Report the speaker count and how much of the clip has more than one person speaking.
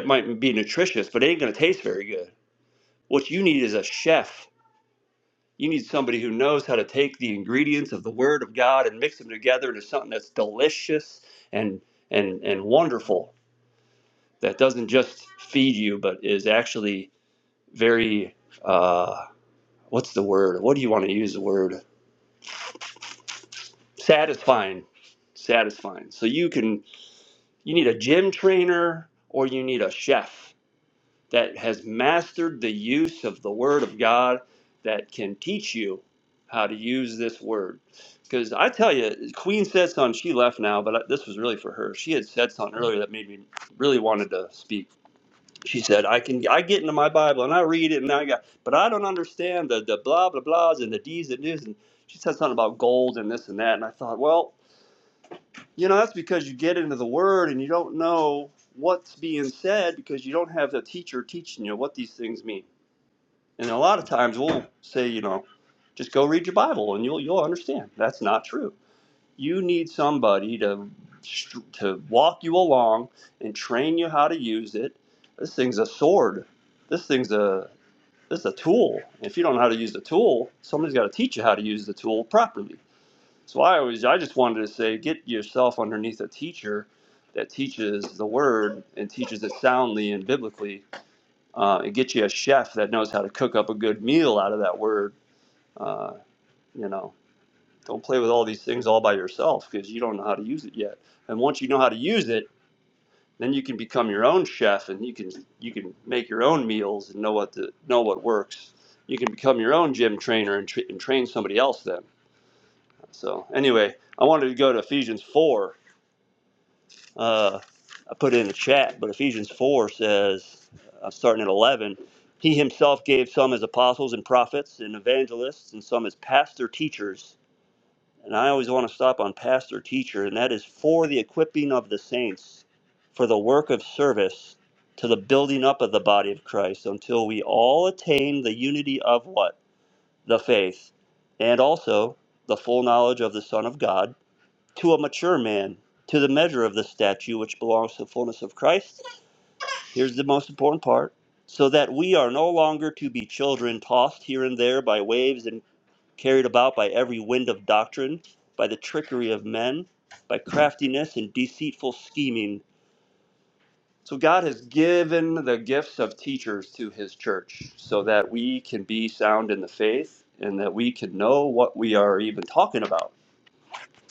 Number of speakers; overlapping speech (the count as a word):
one, no overlap